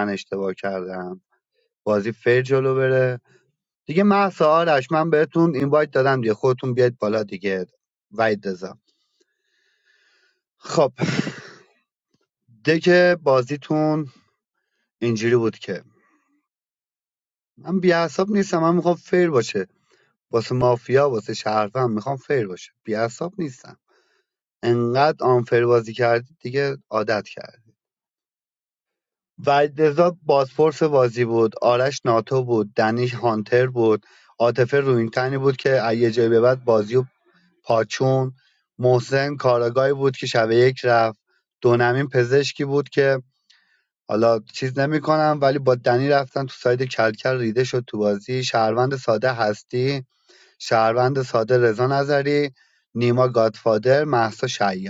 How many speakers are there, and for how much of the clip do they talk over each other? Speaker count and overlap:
1, no overlap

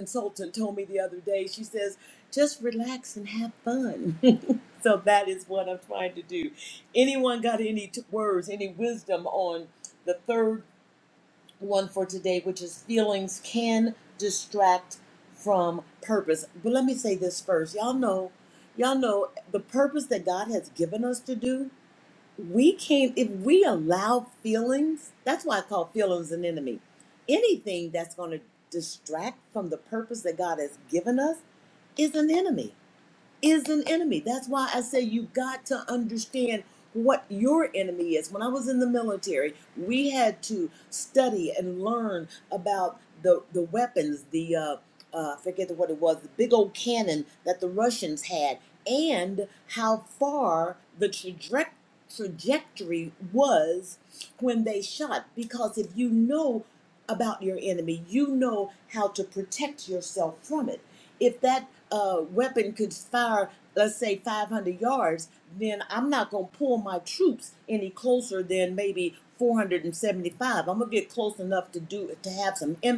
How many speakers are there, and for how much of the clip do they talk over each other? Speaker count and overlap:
1, no overlap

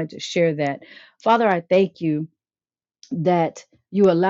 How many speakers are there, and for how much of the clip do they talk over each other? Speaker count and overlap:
1, no overlap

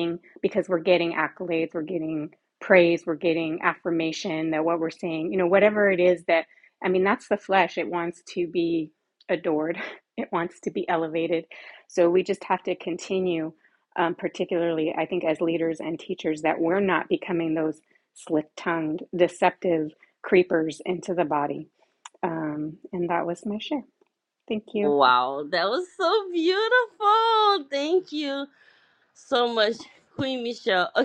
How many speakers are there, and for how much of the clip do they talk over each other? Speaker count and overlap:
2, under 1%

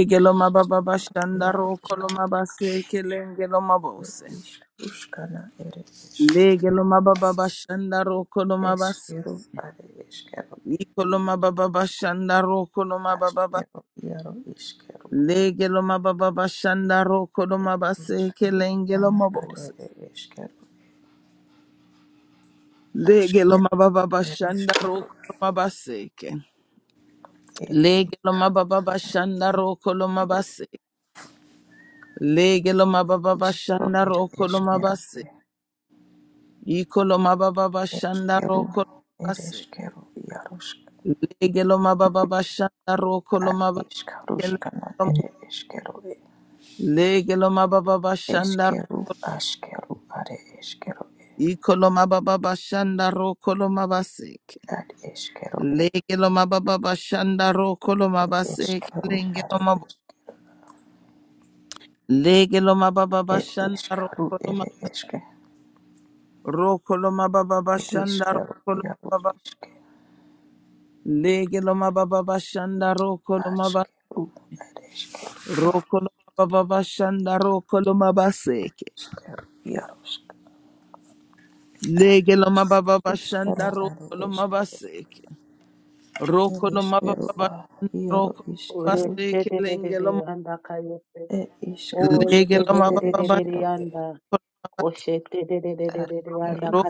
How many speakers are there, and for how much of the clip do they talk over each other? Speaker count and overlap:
3, about 20%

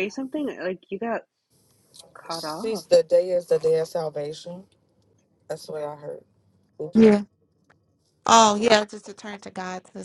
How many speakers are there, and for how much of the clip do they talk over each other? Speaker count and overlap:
3, about 2%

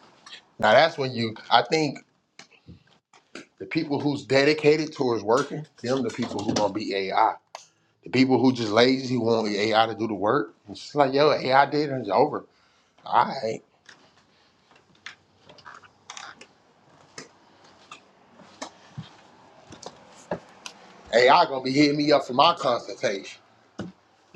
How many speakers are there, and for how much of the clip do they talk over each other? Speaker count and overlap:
1, no overlap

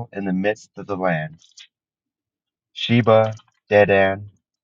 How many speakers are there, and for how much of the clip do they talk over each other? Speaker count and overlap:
1, no overlap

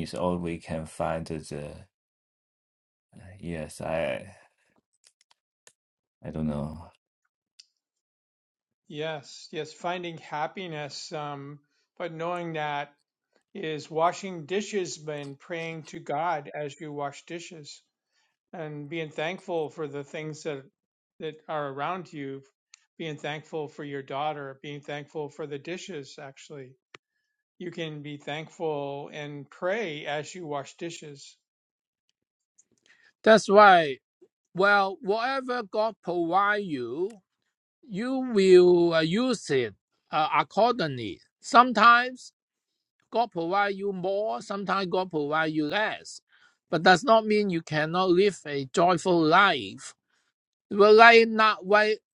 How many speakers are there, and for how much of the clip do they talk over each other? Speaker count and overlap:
3, no overlap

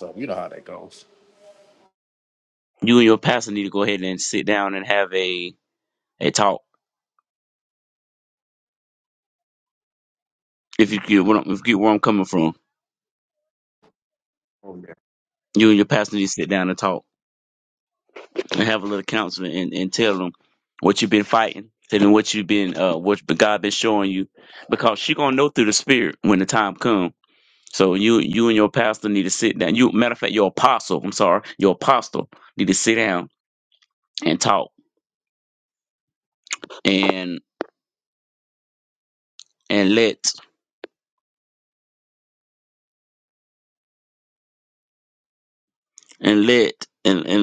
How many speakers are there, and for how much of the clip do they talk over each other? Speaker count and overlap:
2, no overlap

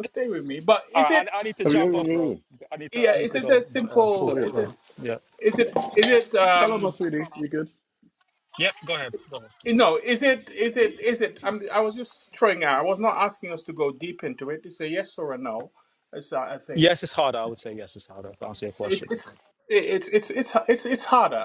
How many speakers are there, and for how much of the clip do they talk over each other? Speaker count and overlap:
3, about 16%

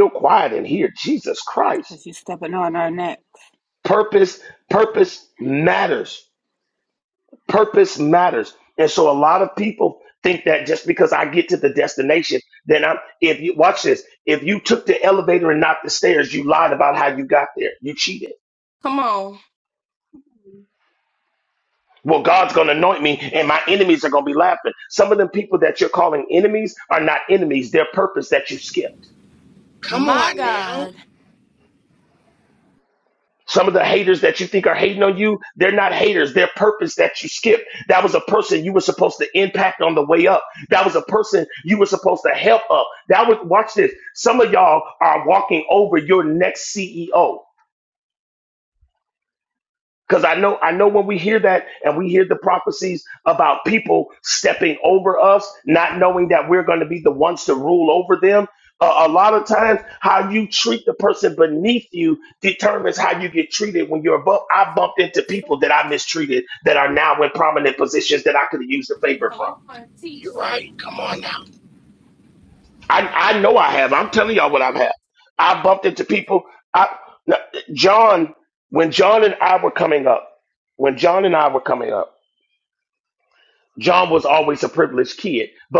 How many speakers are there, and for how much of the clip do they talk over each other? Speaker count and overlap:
4, about 3%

